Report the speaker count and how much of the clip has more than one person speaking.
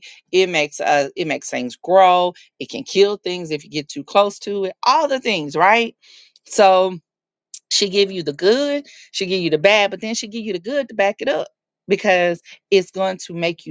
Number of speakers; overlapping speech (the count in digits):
1, no overlap